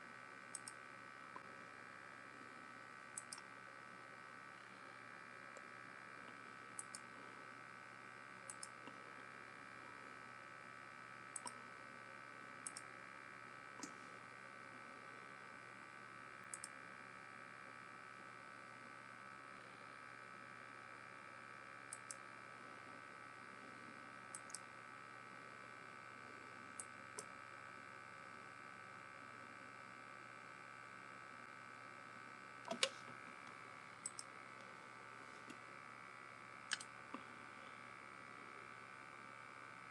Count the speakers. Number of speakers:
0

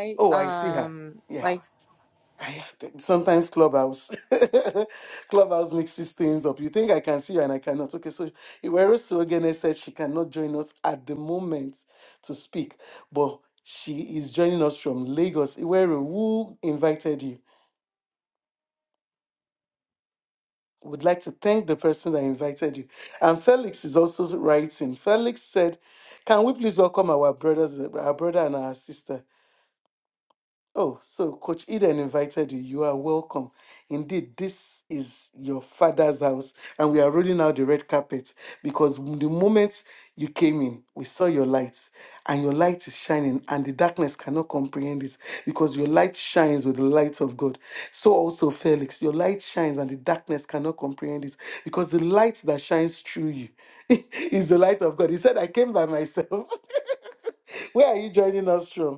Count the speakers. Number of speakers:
2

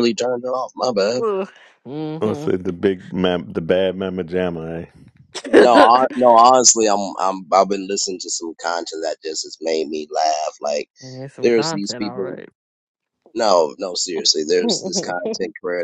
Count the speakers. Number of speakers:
3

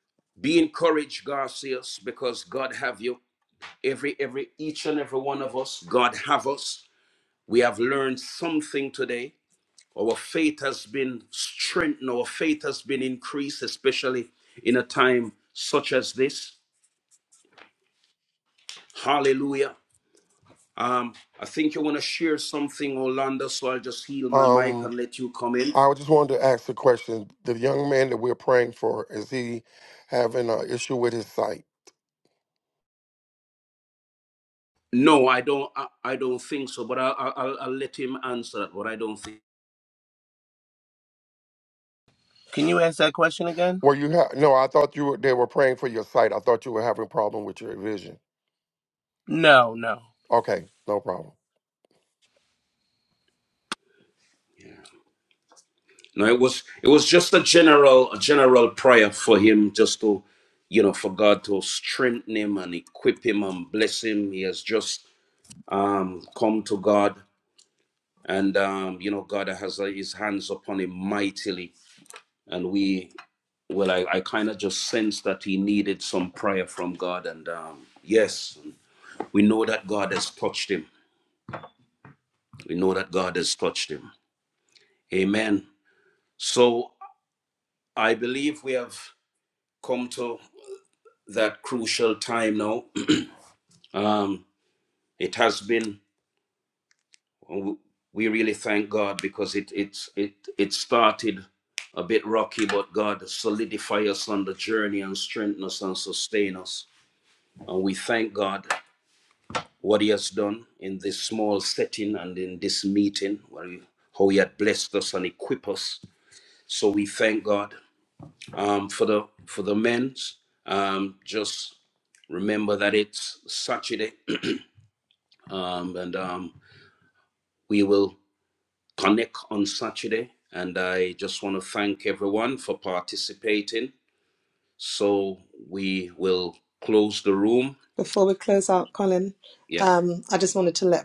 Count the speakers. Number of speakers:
4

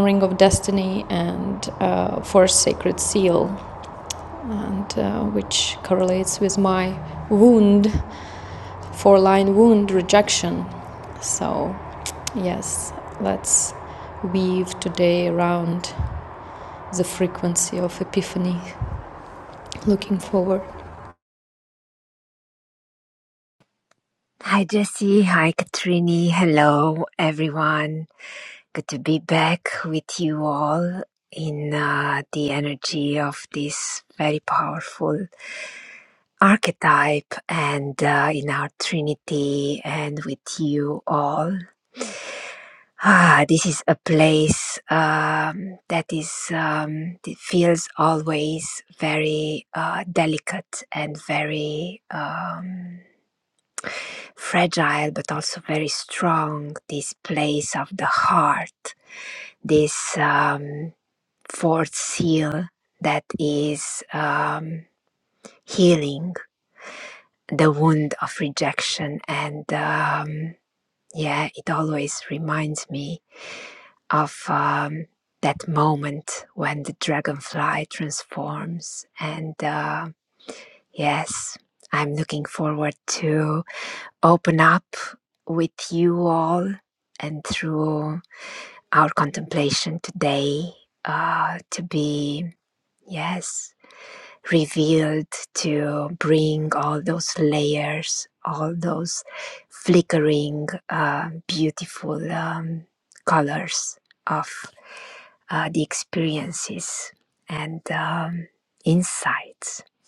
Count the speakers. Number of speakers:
2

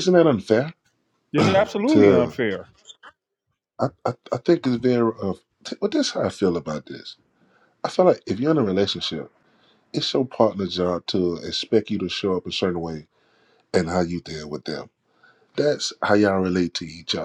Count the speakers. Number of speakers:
2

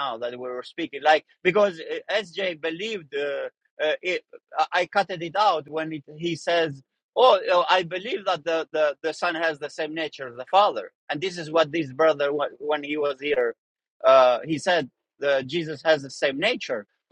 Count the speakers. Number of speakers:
1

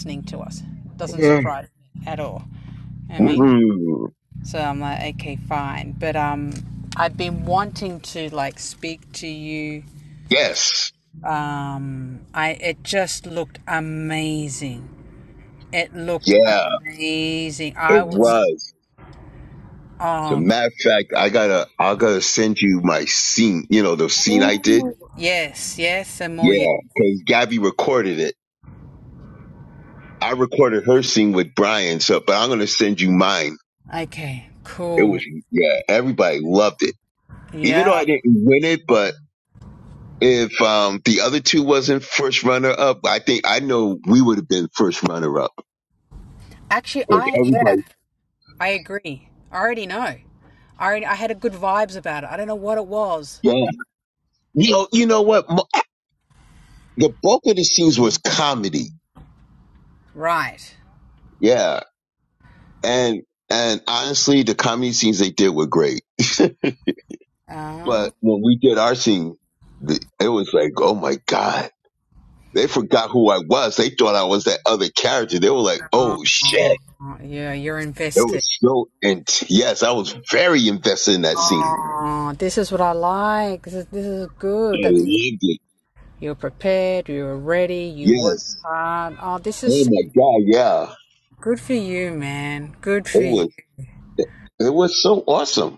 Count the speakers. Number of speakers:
2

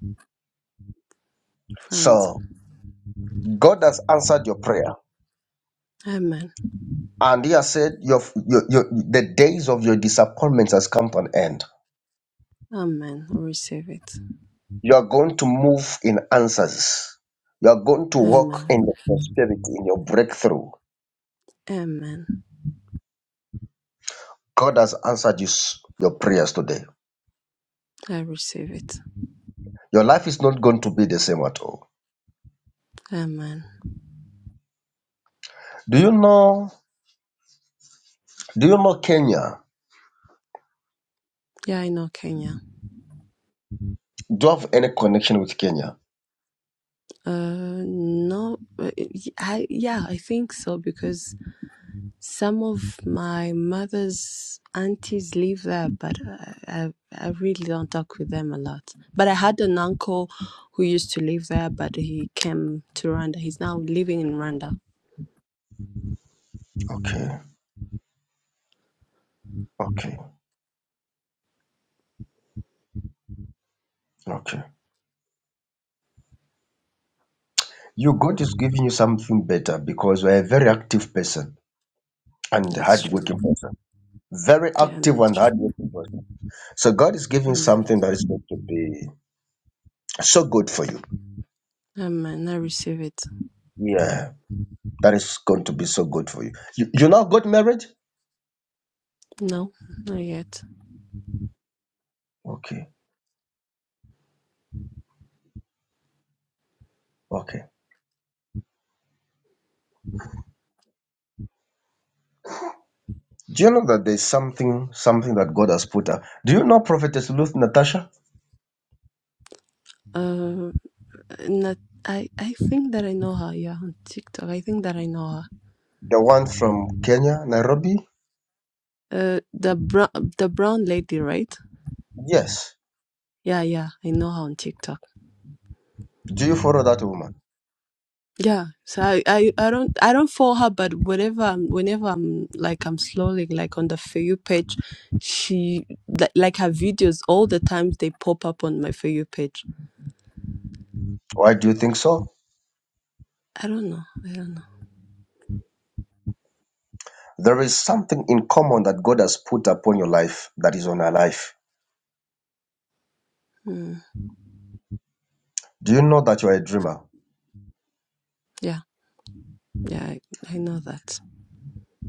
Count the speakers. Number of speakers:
2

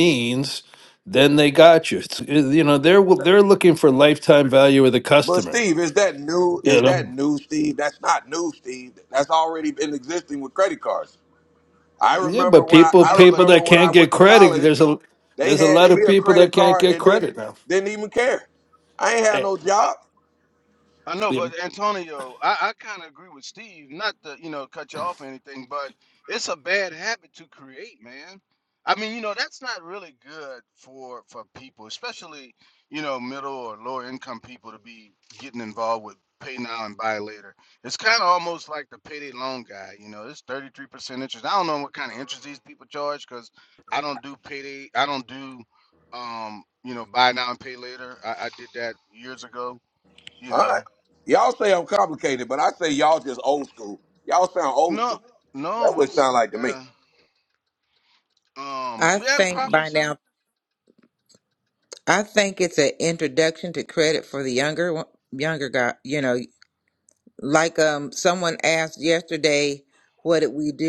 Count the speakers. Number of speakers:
4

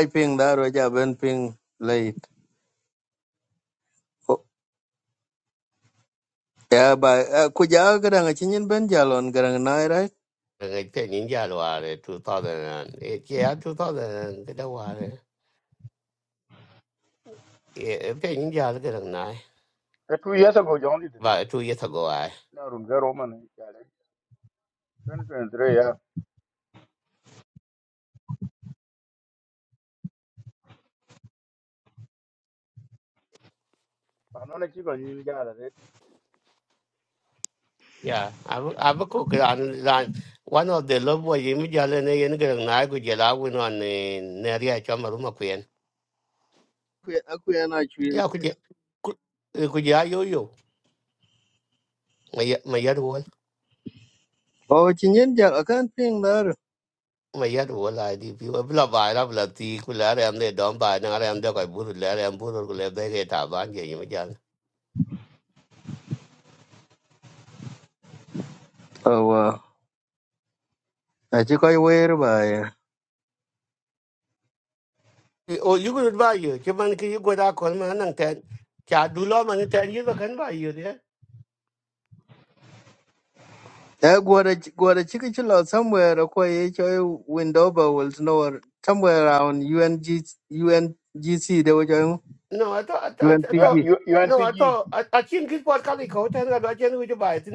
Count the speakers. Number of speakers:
3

